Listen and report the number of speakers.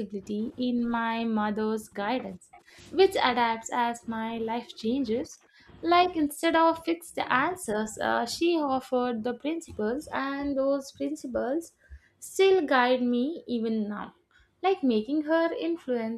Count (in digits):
1